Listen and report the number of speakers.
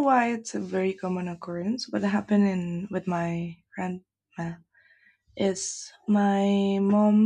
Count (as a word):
one